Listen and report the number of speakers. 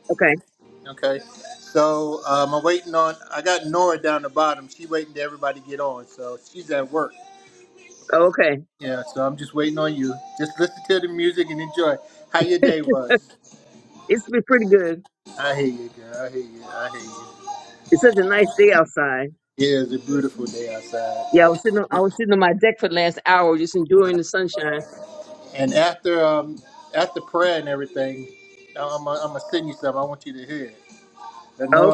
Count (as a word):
two